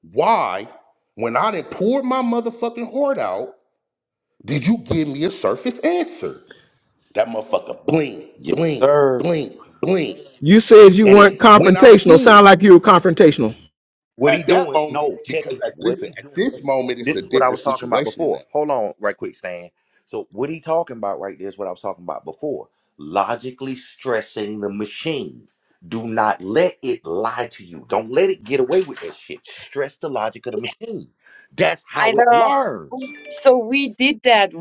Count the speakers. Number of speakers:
four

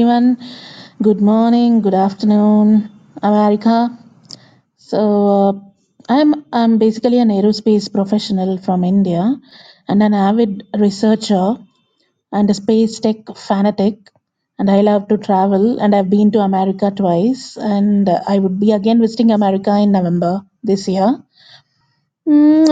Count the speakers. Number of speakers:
one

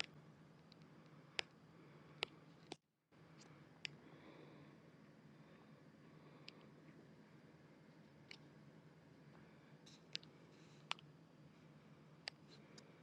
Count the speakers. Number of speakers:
zero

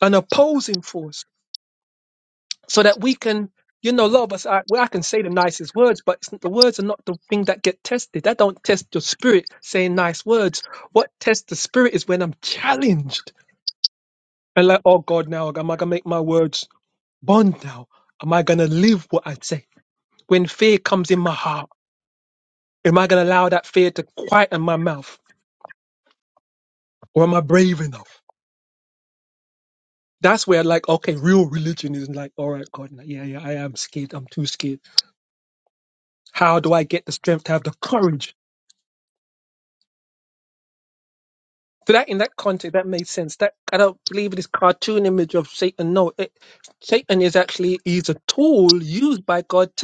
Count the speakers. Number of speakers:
one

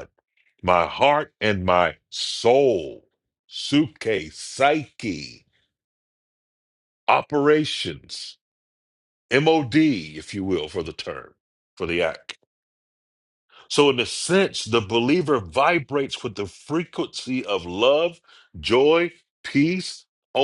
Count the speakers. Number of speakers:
one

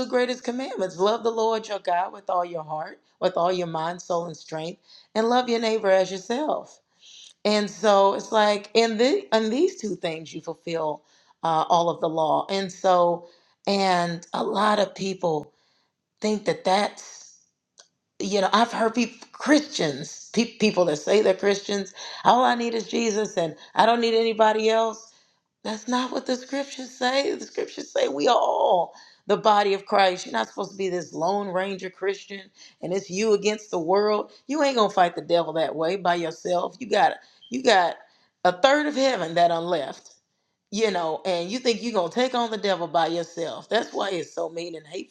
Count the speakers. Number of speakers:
one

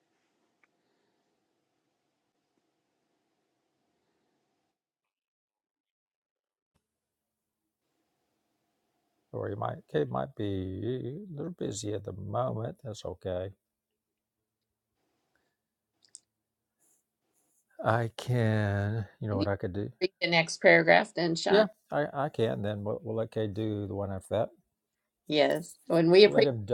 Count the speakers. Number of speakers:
two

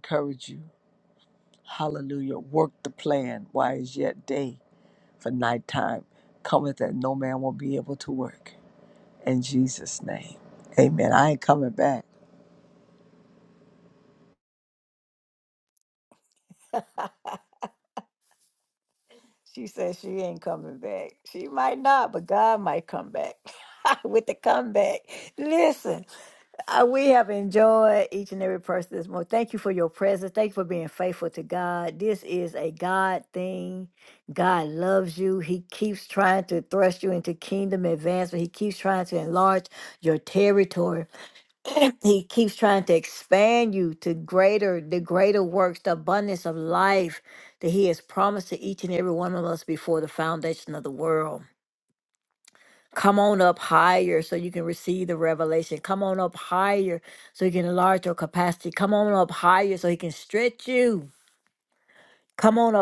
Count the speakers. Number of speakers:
two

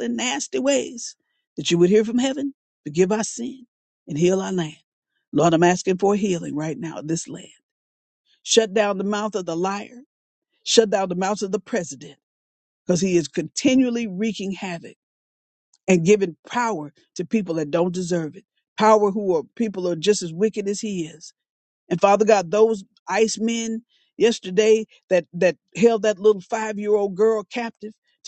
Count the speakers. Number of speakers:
one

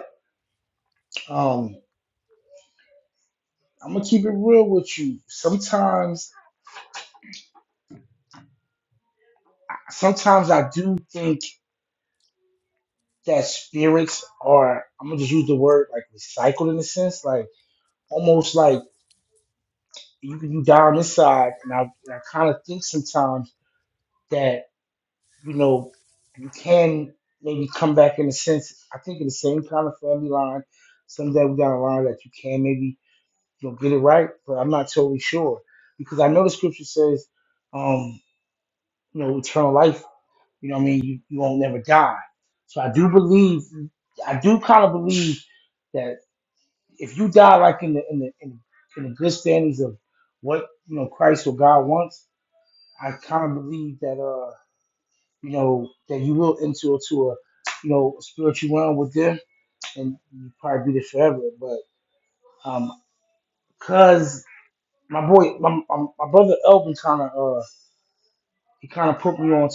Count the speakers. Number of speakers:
one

